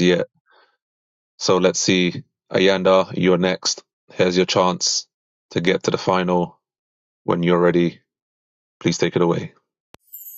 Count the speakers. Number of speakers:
one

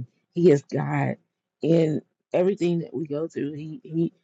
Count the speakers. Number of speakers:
one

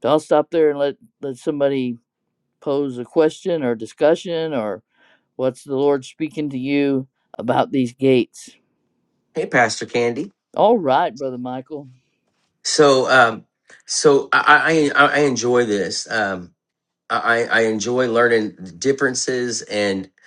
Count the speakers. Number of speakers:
two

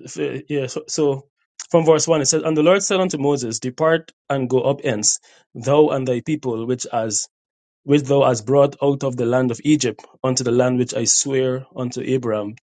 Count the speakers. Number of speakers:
one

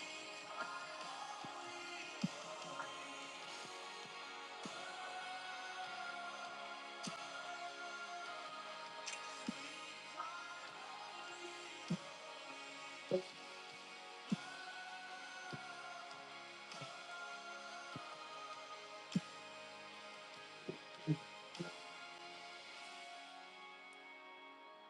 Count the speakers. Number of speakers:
zero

